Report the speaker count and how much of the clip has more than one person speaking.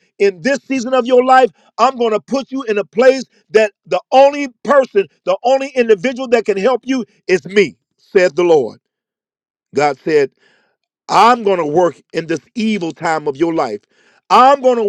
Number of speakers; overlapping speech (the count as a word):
one, no overlap